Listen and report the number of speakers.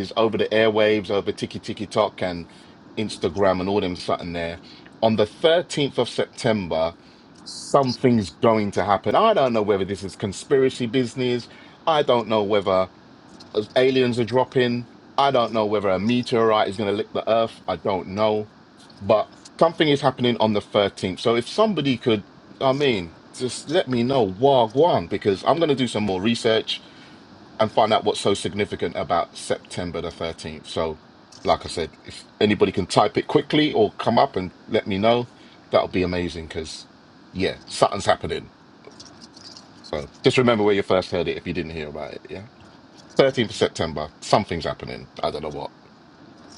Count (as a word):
one